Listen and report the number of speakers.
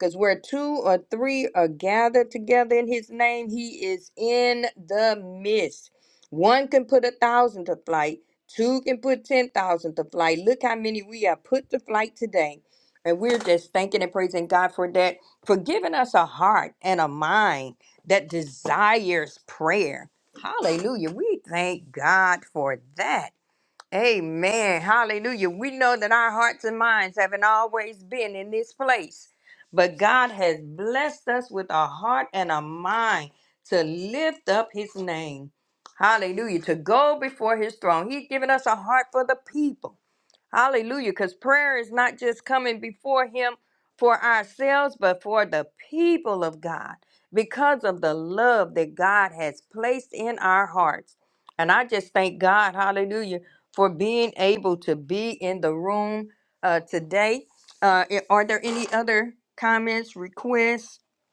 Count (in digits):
1